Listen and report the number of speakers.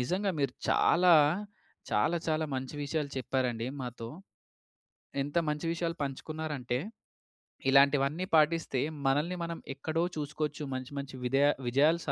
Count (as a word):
one